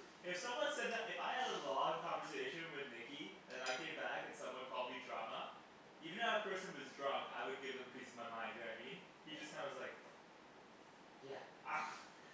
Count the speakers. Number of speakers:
one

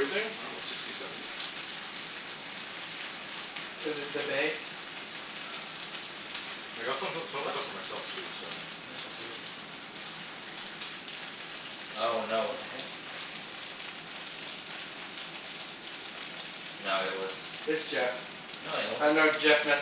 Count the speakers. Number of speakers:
three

